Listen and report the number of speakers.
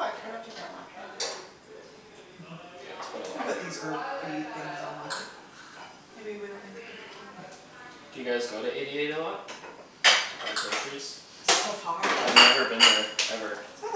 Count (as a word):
three